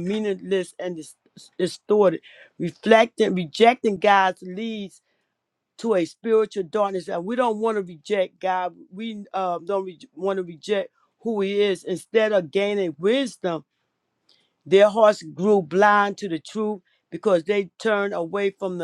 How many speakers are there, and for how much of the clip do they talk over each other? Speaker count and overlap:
one, no overlap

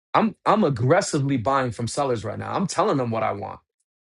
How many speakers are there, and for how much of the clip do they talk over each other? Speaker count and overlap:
one, no overlap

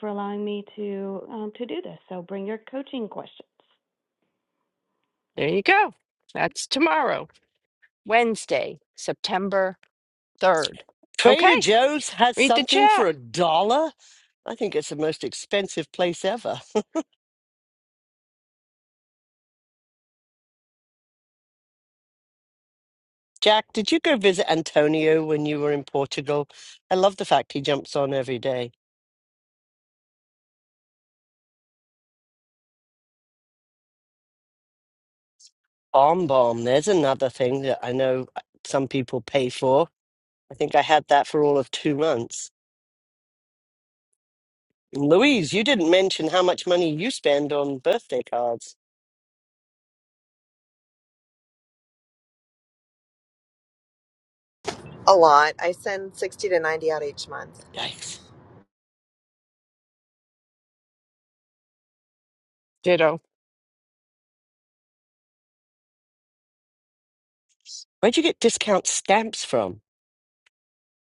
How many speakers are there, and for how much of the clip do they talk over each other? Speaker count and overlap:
four, about 1%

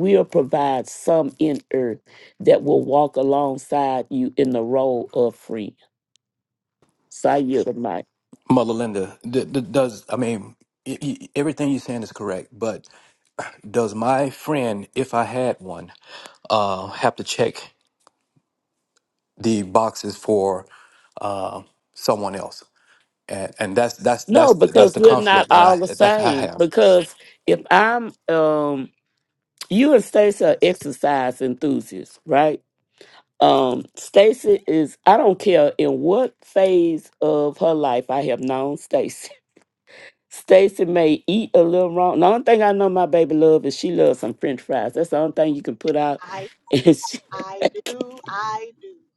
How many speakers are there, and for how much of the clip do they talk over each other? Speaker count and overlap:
three, about 5%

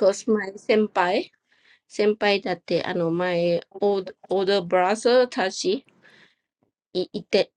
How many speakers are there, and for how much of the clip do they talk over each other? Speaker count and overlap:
one, no overlap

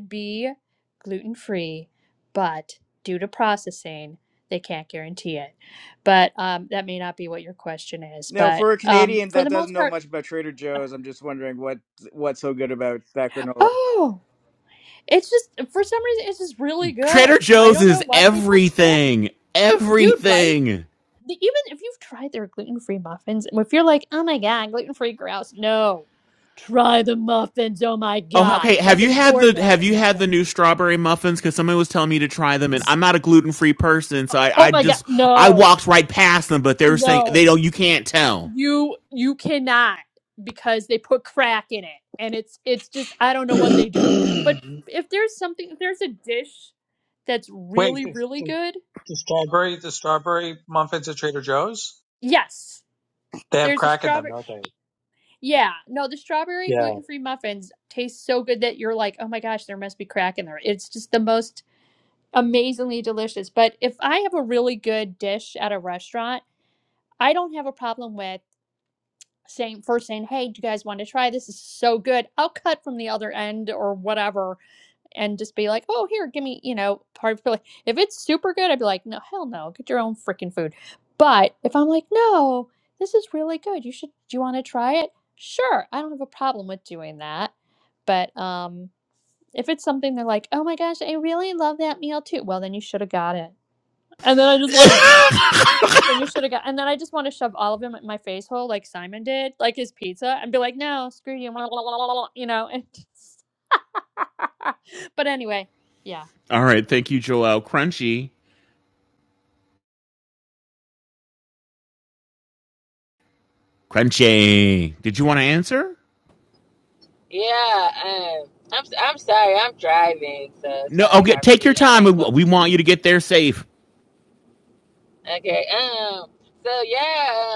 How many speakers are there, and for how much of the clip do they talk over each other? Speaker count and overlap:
five, about 9%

